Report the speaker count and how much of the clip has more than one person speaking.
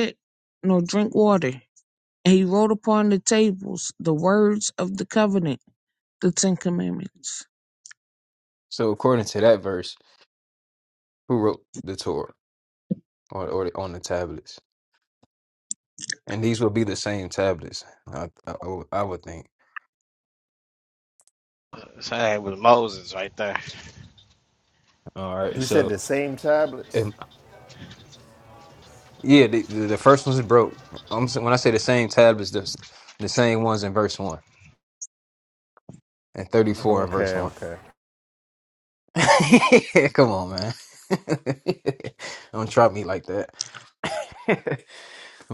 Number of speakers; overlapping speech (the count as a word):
four, about 3%